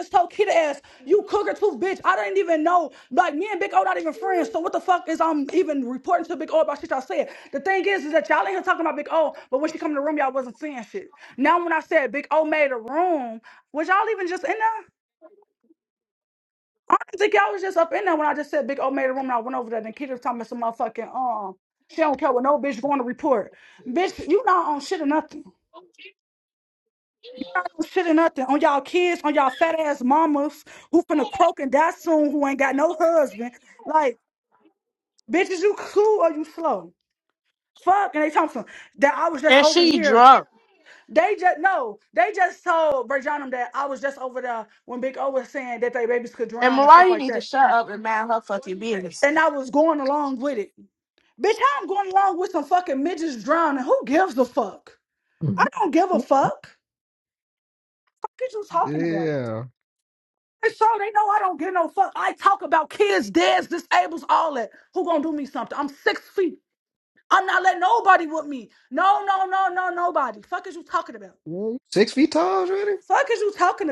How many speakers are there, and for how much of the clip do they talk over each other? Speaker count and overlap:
3, about 2%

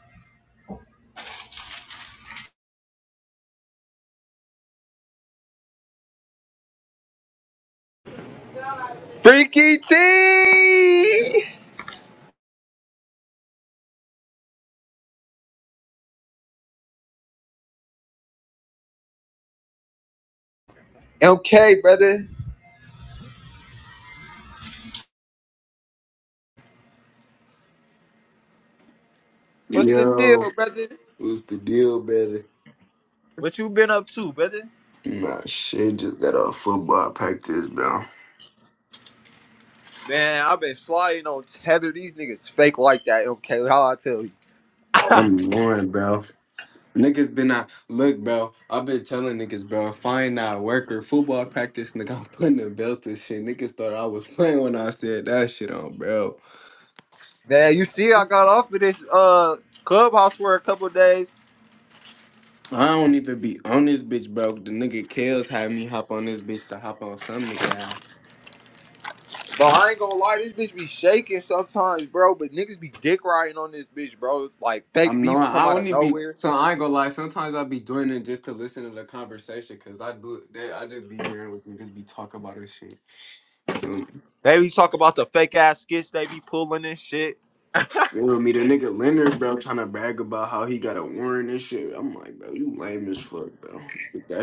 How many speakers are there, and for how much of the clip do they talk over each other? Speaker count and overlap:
2, about 2%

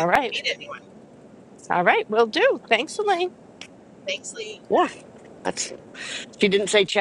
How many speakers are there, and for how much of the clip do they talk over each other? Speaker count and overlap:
3, about 5%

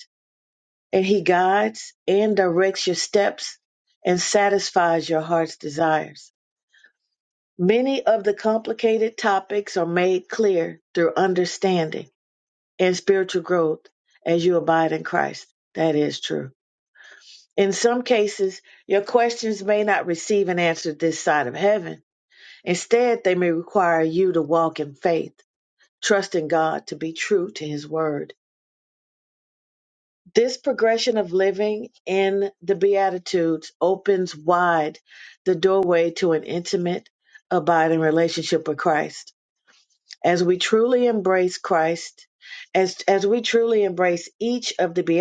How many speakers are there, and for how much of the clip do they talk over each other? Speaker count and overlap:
1, no overlap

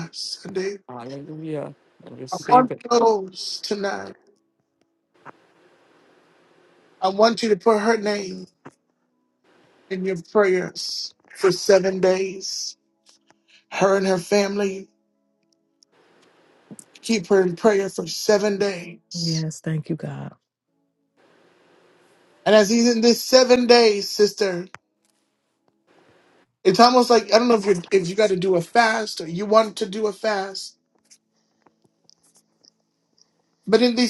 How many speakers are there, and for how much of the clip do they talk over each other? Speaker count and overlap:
3, about 1%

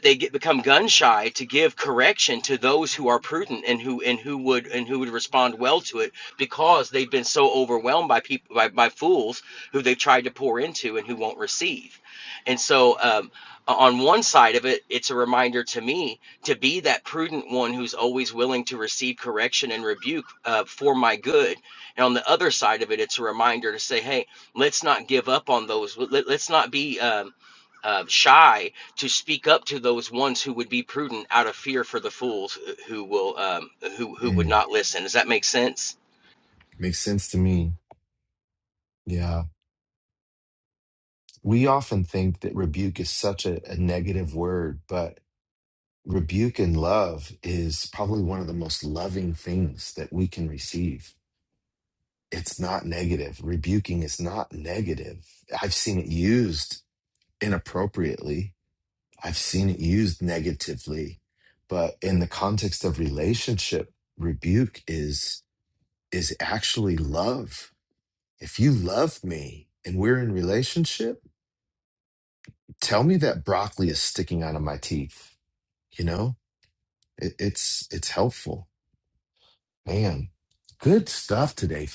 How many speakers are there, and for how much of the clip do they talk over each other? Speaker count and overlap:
2, under 1%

